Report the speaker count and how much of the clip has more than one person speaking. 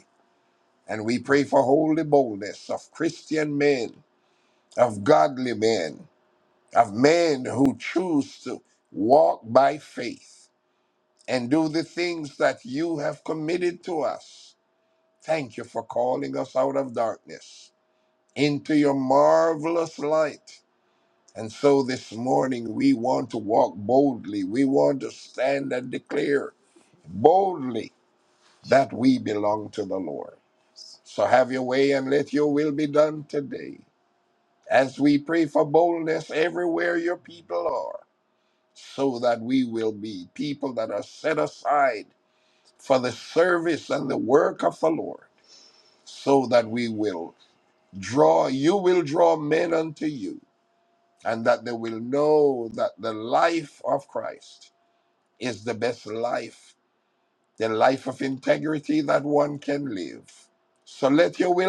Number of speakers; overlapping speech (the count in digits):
1, no overlap